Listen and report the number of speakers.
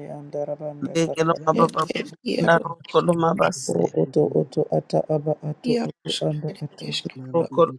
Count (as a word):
three